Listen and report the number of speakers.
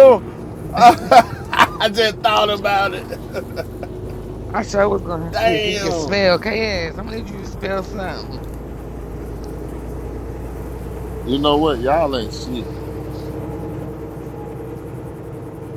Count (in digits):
3